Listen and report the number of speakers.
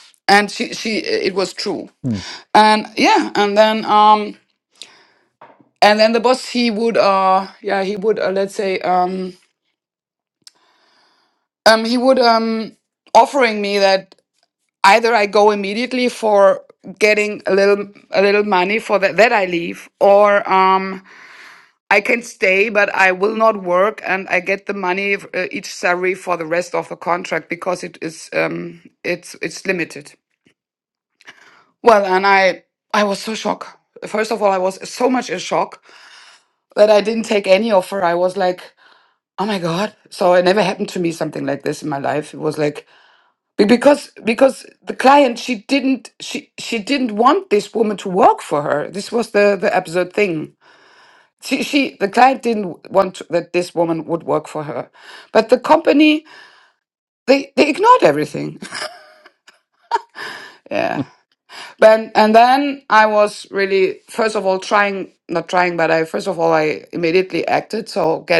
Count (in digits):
1